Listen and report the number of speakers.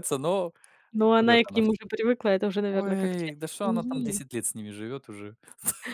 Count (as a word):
two